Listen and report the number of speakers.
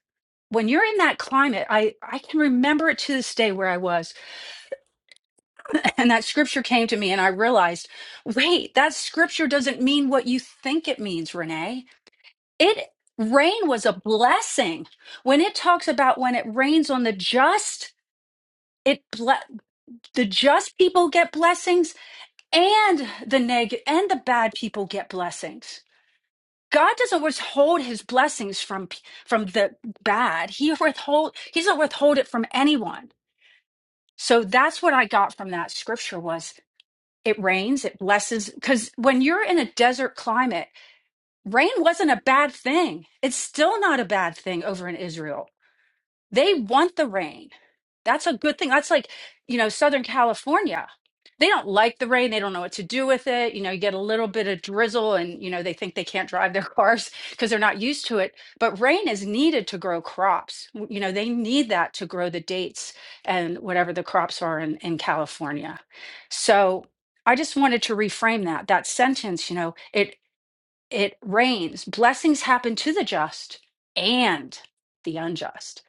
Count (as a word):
one